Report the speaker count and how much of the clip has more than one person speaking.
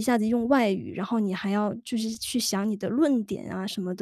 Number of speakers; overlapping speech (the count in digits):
1, no overlap